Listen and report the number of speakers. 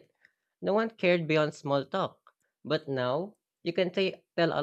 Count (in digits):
1